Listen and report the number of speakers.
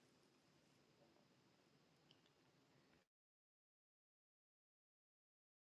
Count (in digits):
0